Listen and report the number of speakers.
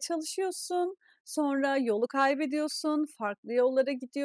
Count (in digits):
1